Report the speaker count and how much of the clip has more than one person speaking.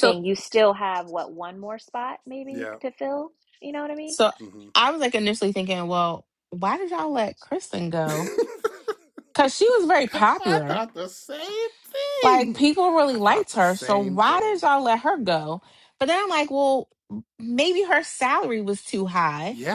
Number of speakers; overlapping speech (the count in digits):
3, about 14%